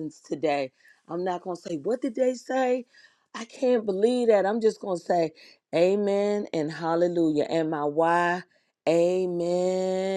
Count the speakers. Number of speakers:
one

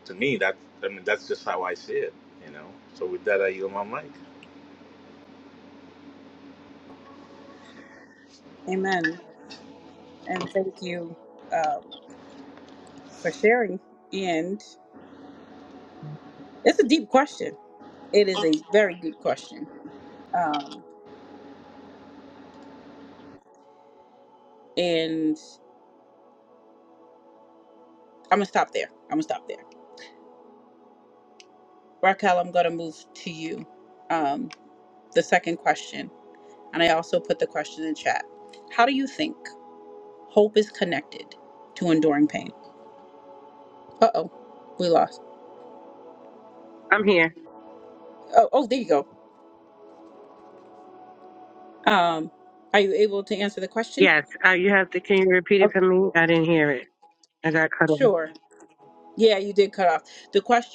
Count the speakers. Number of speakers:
three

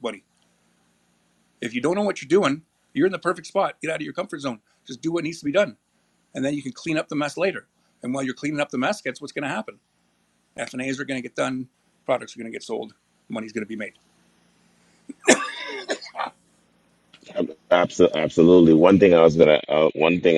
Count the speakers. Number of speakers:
two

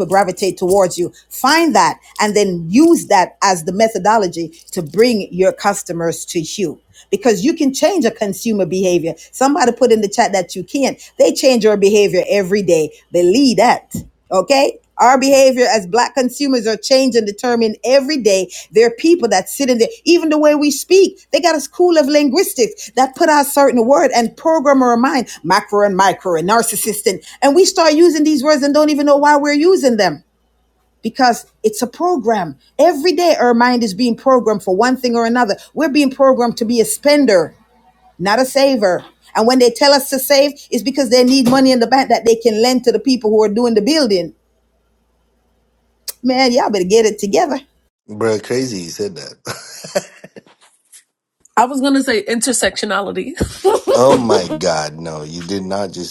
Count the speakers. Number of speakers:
three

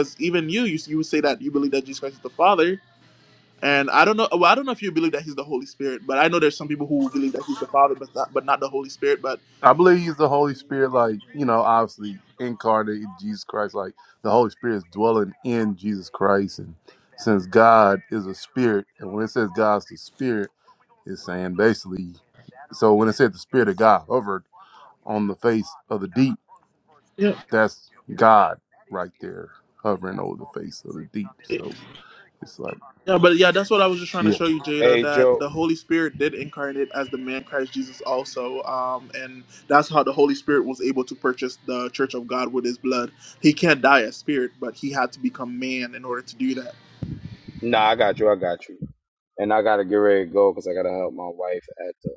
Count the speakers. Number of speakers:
three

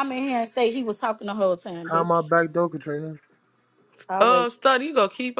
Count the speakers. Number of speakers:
three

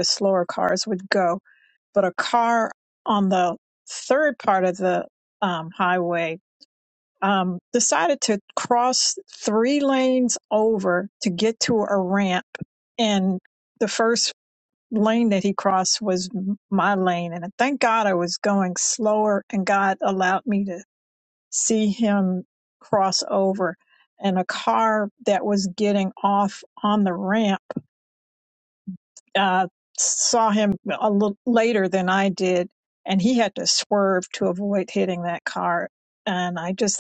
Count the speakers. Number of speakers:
one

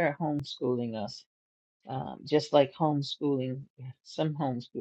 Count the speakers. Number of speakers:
one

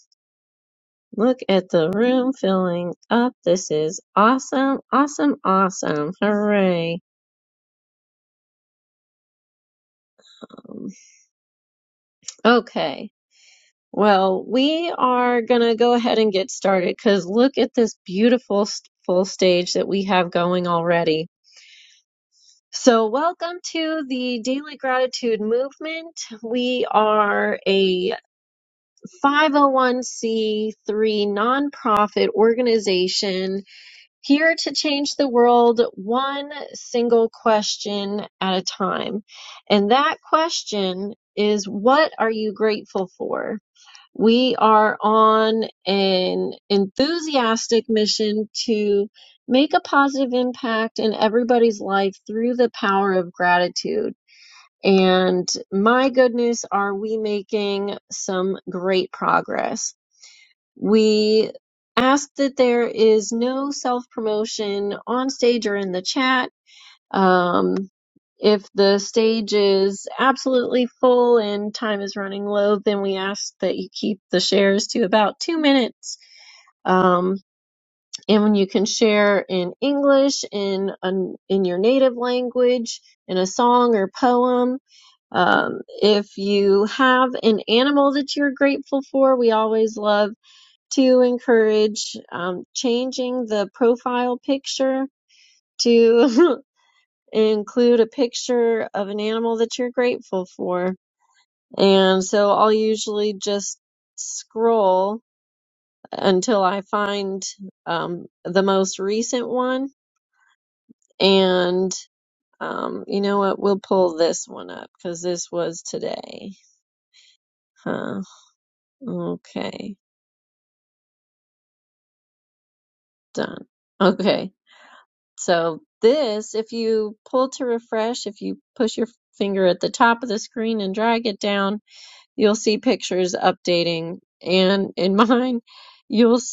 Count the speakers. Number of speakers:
one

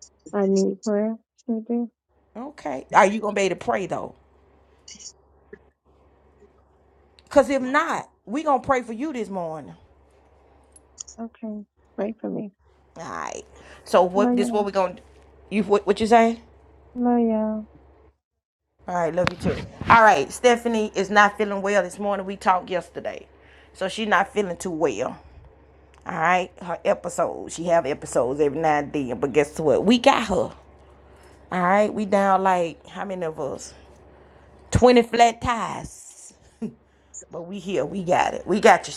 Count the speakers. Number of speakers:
two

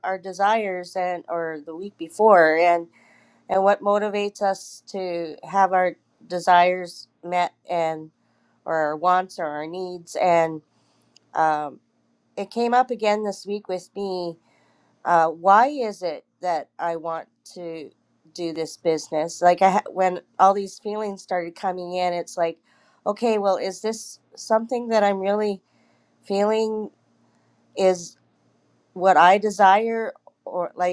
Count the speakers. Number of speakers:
one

